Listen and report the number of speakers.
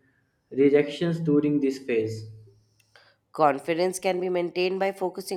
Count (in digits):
2